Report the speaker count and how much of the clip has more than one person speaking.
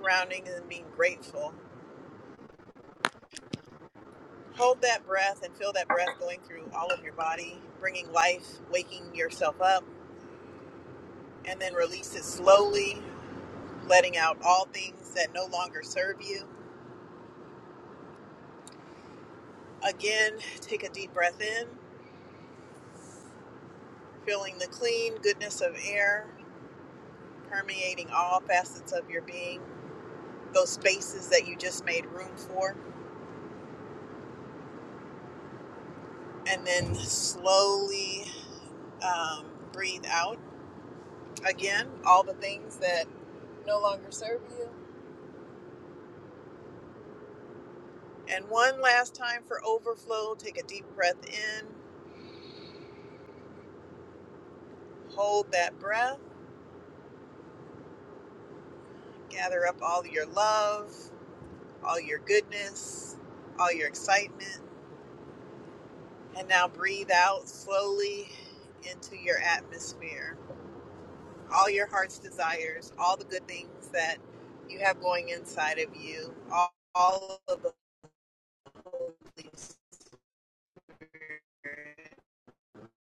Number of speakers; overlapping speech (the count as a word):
one, no overlap